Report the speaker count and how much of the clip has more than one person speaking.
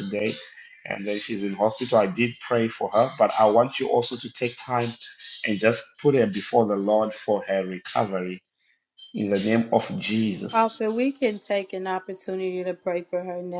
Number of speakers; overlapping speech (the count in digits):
2, about 2%